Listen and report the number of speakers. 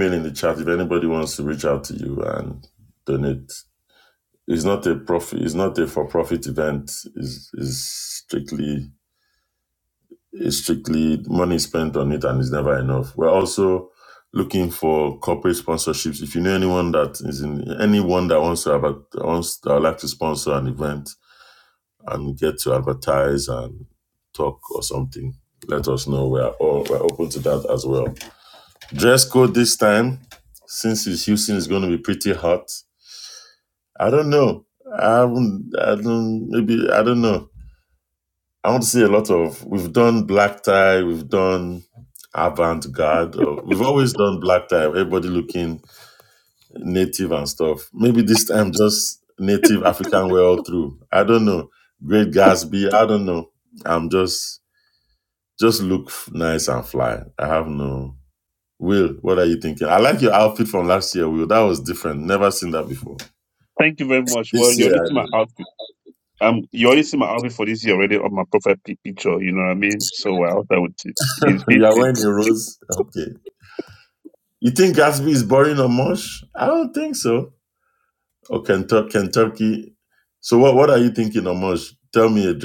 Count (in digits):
2